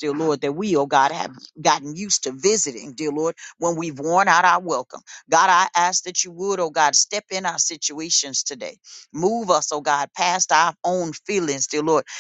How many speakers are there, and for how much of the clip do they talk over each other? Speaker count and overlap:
1, no overlap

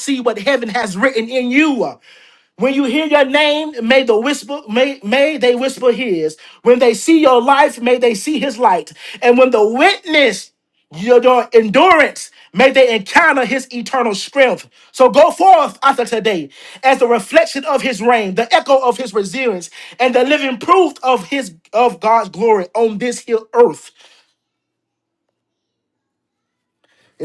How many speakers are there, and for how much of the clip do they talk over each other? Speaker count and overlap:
1, no overlap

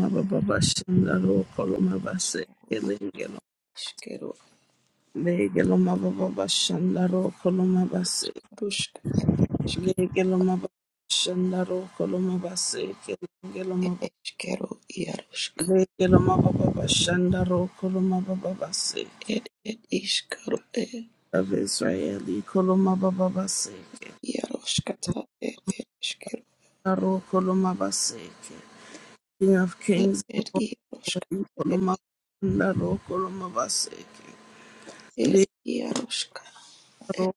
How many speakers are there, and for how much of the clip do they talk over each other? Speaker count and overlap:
2, about 2%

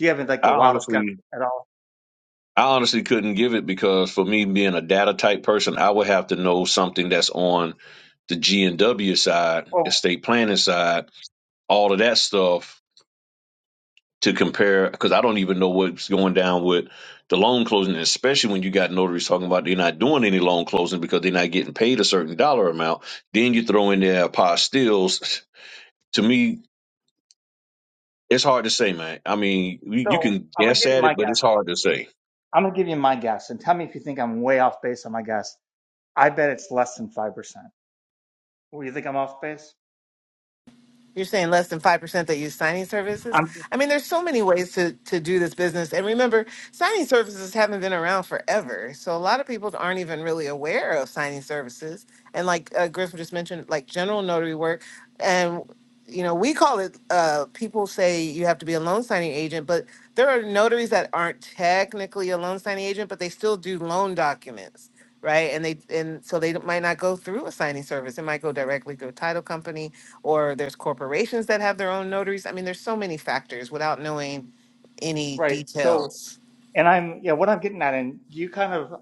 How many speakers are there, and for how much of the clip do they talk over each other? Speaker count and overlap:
3, about 4%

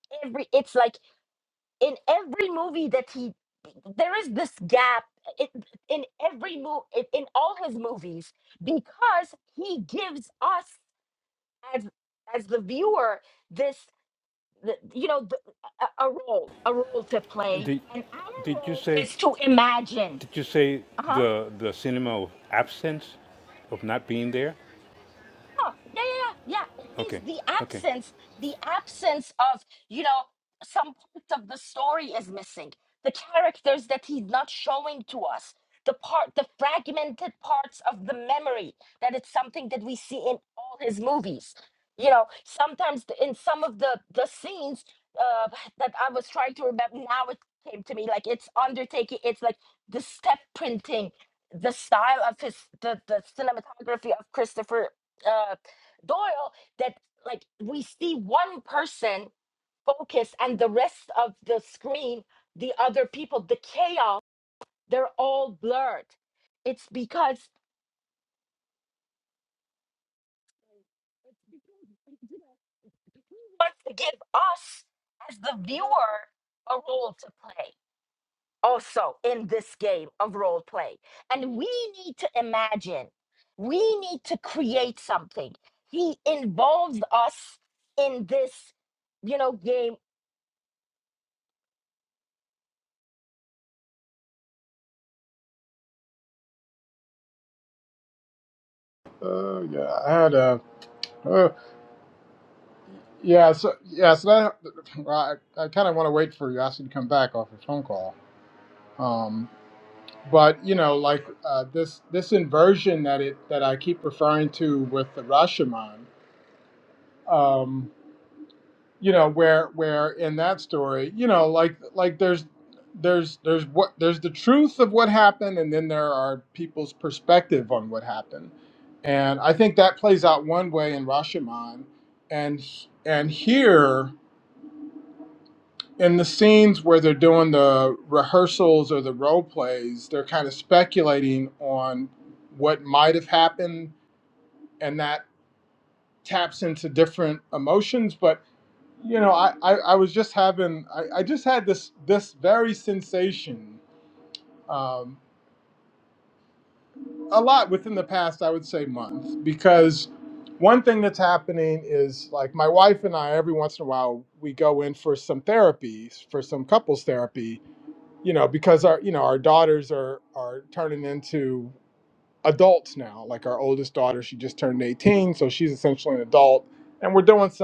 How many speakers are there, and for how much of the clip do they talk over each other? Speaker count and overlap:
3, about 1%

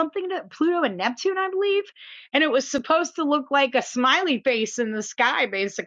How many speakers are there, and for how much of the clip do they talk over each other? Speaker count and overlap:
1, no overlap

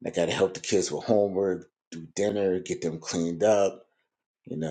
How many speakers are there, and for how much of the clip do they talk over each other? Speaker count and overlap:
1, no overlap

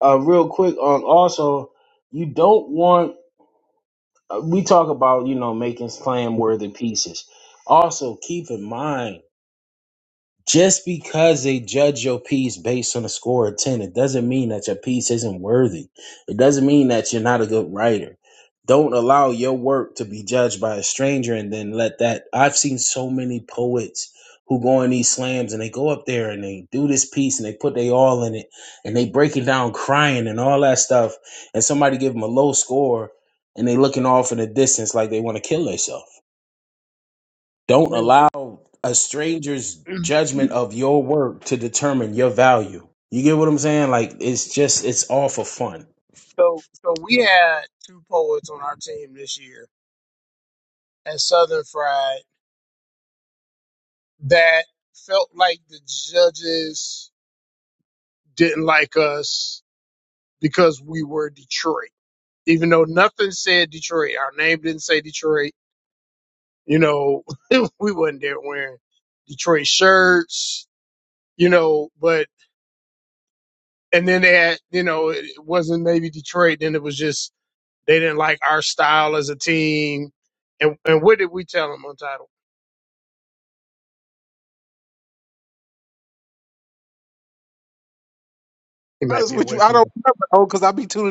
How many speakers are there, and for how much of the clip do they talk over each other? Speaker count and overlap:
3, about 1%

